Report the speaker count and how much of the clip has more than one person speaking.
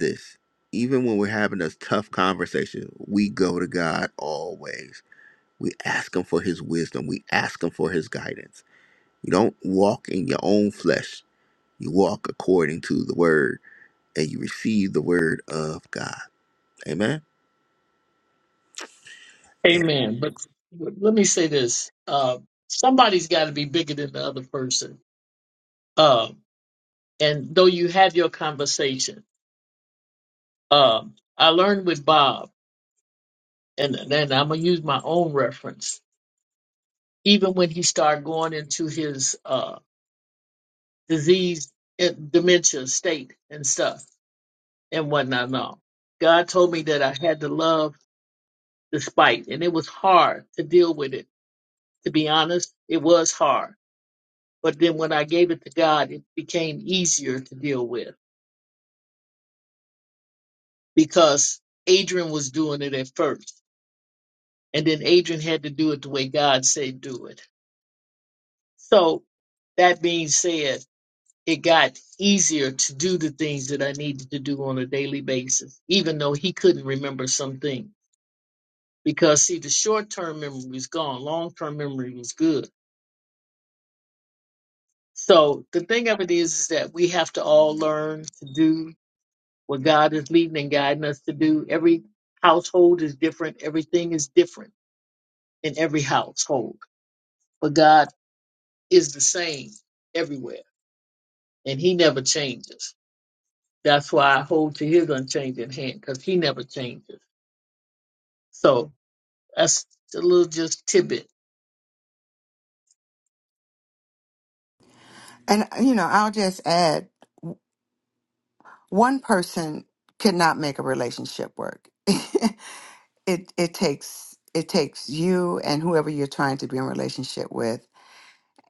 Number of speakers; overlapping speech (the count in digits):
3, no overlap